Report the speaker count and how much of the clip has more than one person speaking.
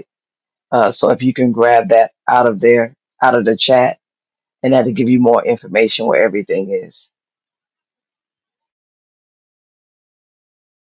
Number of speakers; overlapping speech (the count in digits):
1, no overlap